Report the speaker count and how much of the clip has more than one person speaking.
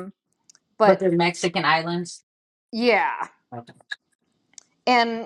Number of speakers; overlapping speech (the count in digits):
2, about 3%